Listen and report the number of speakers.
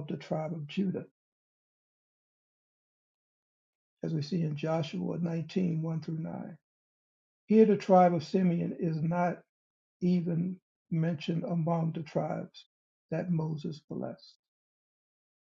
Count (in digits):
1